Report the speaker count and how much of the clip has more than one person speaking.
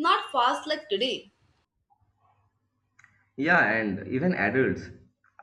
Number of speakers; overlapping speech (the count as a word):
two, no overlap